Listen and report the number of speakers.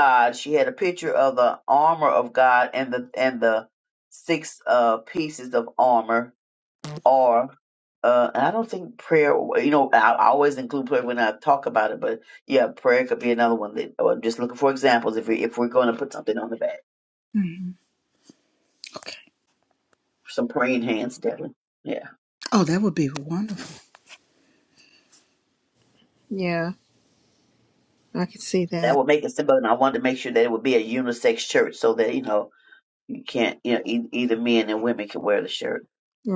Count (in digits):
3